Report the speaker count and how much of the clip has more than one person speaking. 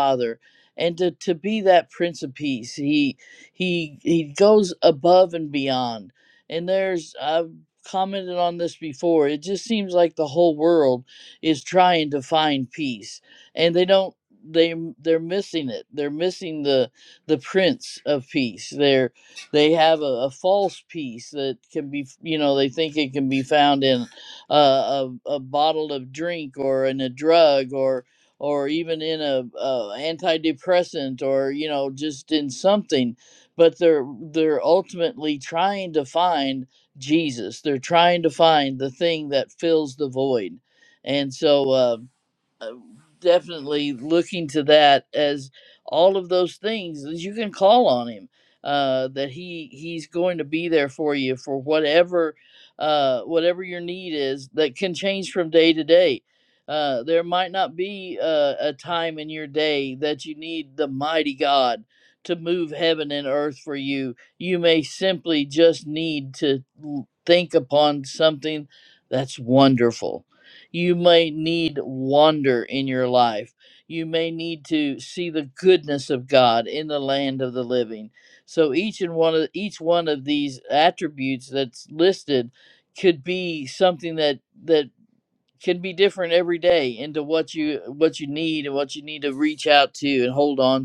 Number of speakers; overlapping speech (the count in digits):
1, no overlap